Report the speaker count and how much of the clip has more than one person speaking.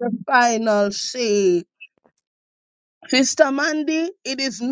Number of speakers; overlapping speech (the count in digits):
1, no overlap